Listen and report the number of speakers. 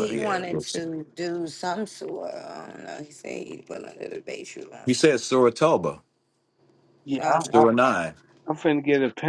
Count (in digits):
3